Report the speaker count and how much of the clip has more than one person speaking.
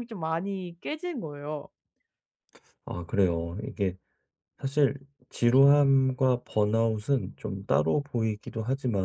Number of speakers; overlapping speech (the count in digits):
2, no overlap